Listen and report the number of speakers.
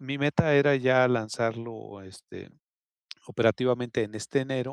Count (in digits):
1